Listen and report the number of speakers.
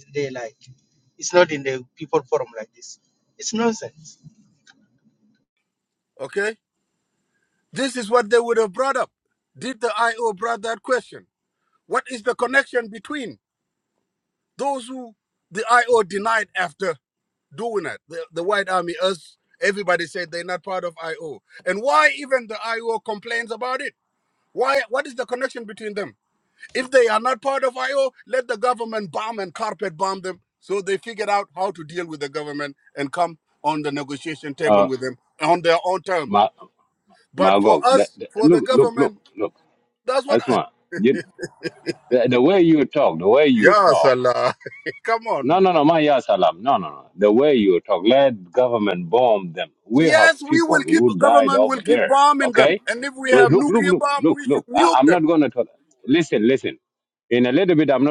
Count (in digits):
3